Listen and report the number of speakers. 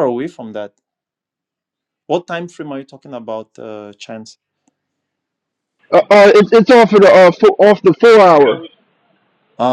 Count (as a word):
two